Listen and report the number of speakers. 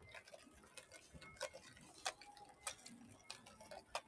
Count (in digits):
0